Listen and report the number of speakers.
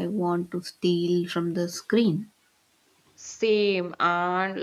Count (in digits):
2